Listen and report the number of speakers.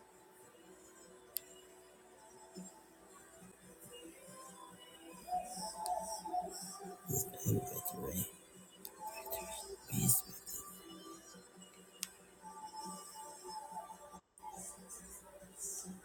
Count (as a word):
zero